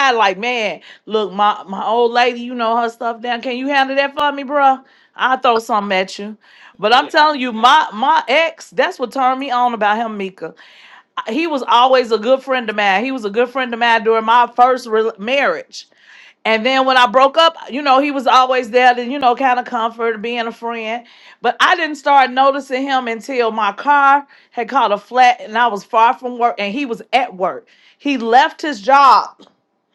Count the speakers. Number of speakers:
1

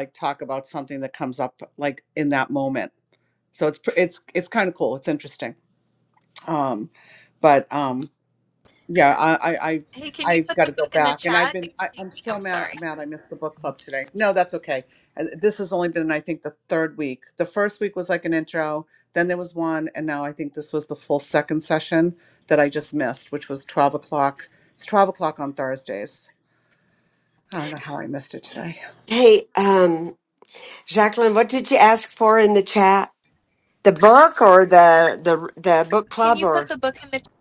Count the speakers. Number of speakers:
3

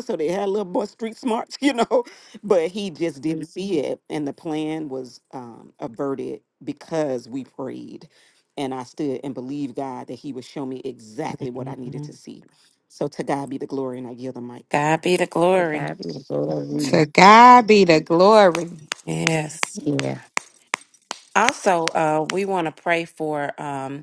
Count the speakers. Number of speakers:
4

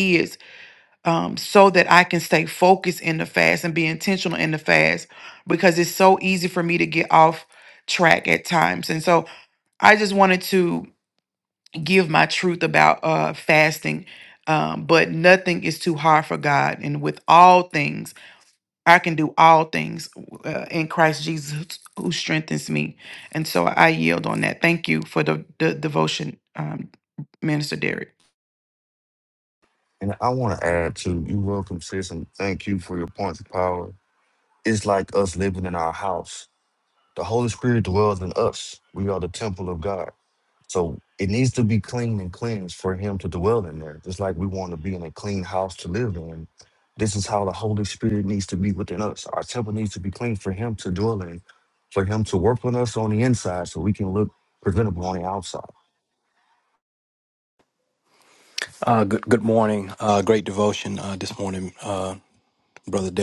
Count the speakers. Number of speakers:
3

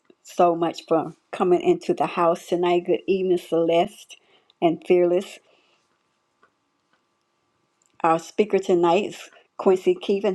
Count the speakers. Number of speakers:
1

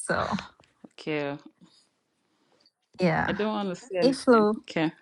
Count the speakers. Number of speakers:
2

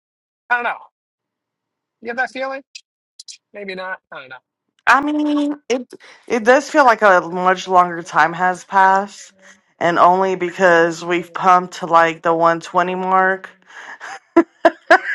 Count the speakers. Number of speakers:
2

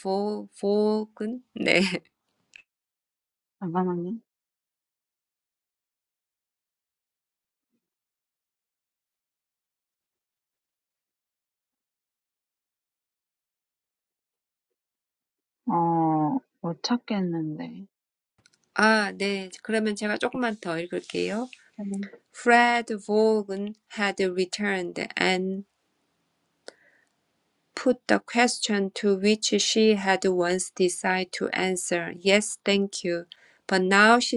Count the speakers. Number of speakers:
2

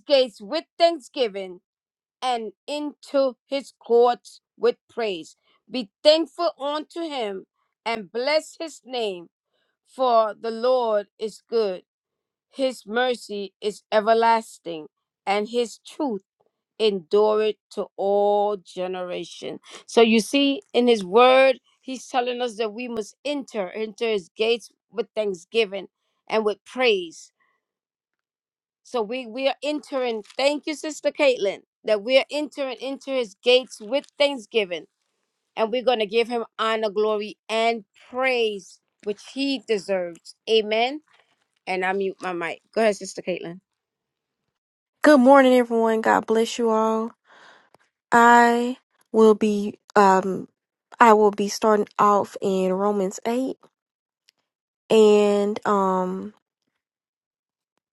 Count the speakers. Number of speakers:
2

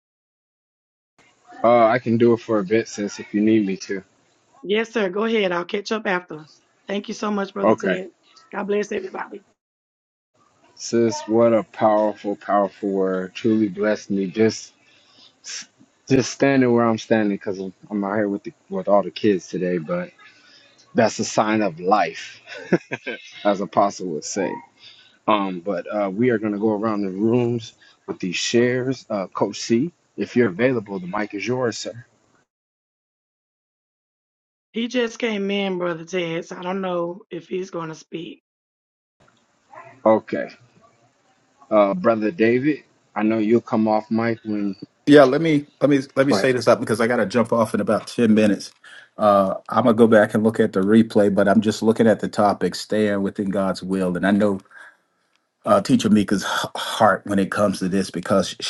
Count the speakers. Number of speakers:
3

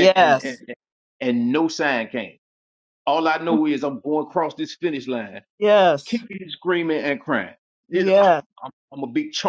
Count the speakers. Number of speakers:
2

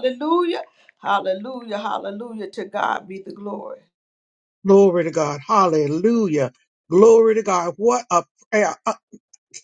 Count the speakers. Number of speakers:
2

